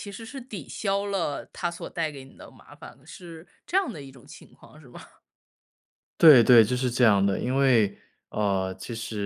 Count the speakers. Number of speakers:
2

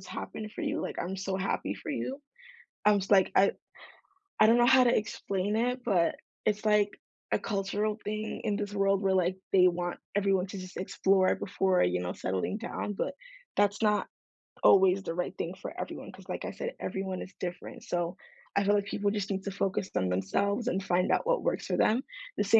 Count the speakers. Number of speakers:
1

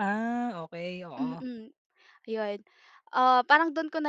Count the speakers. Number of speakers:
2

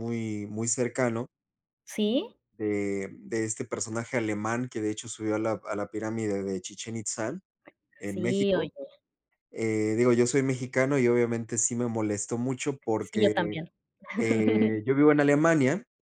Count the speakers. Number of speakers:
2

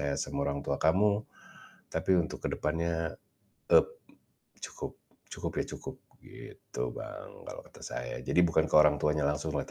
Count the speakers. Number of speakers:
1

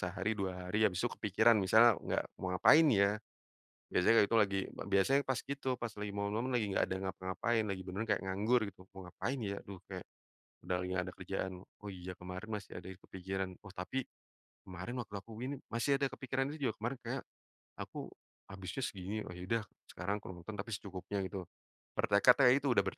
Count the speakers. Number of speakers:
1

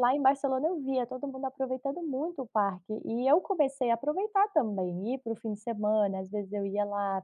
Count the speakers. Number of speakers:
1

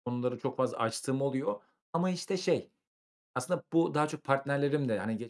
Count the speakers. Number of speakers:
1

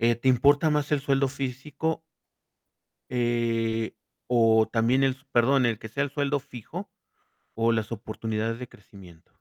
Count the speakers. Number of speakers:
1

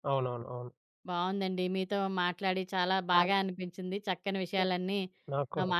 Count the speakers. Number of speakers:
2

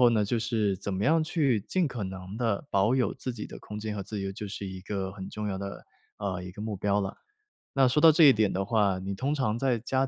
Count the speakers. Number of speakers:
1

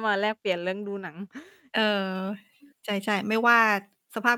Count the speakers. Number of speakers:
2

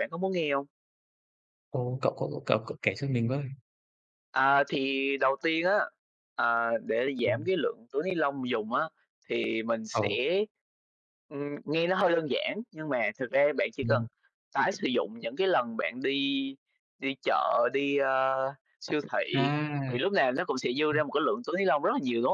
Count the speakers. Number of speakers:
2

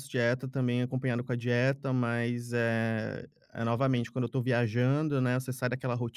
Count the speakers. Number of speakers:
1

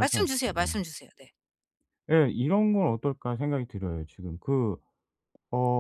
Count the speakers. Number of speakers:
2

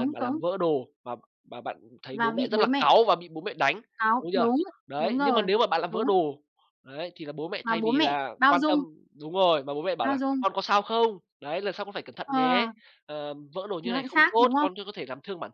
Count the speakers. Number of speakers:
2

